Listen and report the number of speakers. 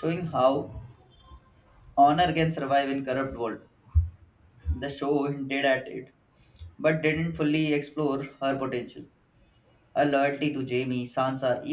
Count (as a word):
one